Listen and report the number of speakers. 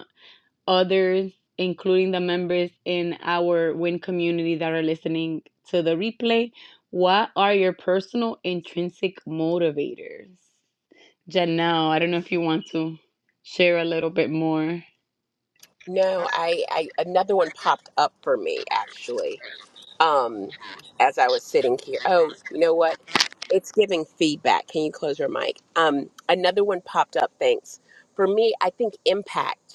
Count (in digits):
2